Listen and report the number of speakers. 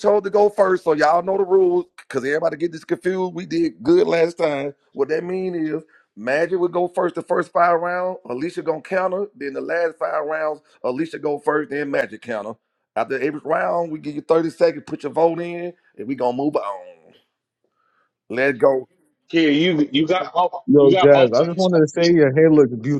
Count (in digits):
3